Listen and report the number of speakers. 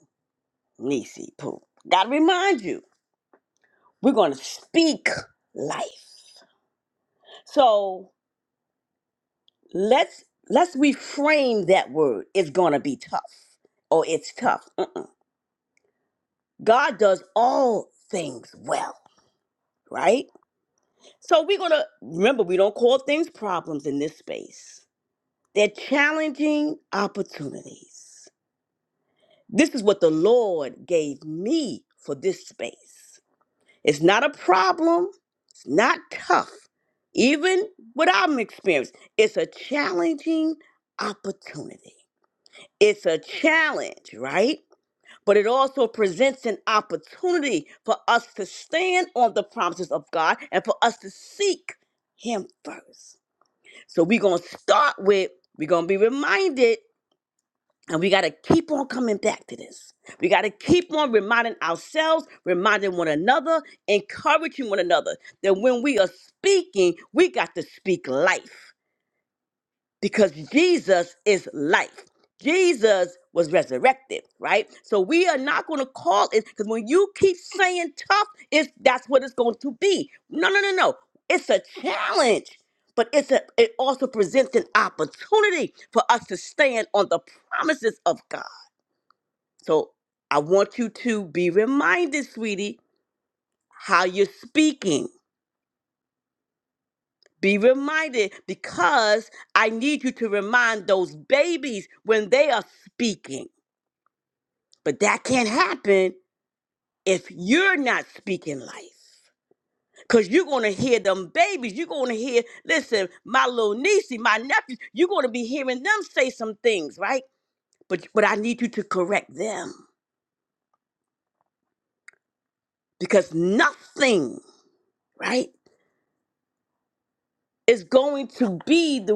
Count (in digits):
1